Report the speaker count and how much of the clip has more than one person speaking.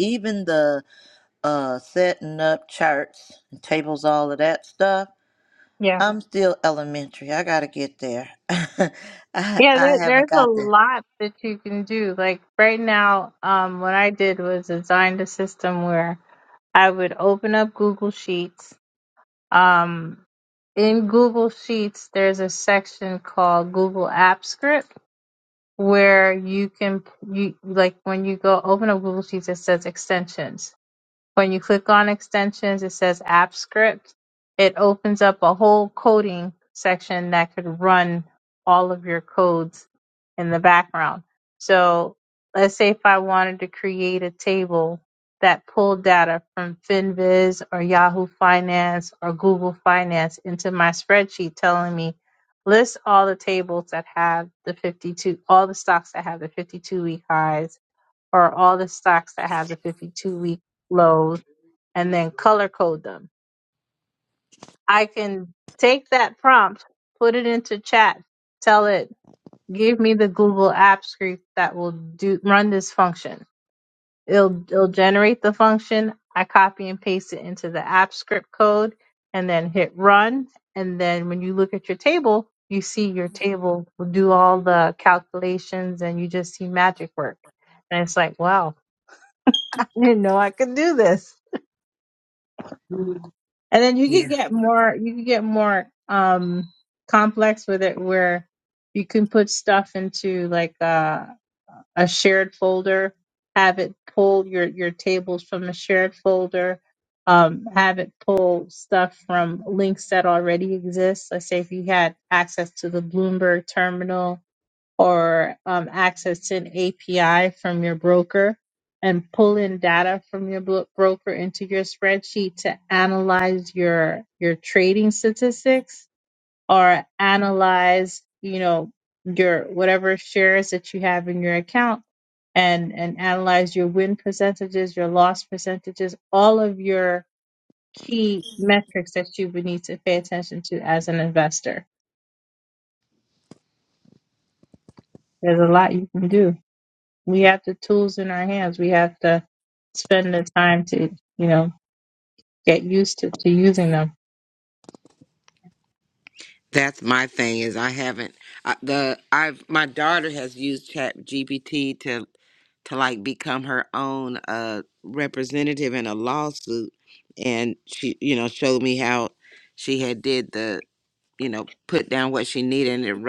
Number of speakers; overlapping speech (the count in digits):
3, about 1%